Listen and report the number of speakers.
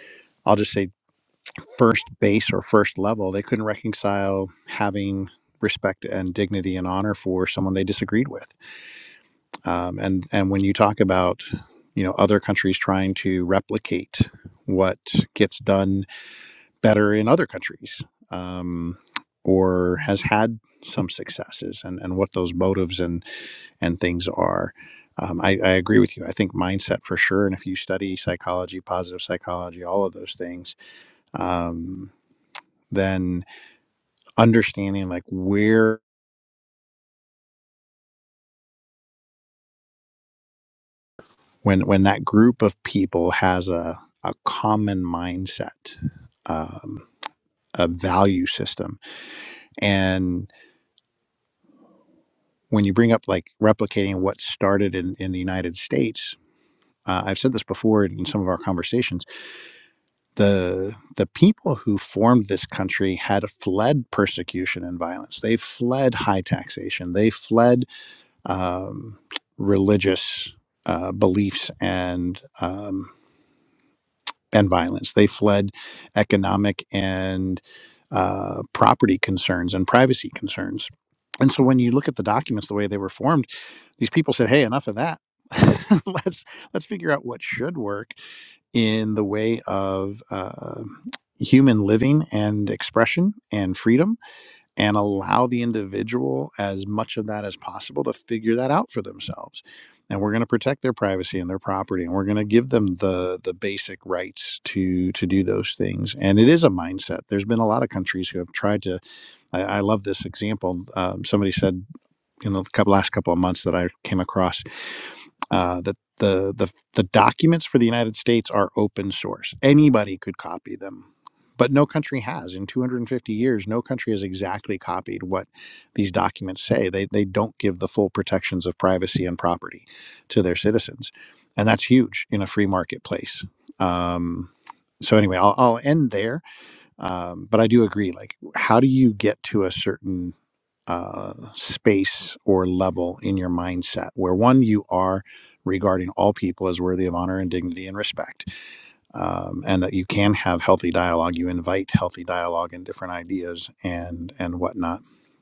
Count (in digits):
1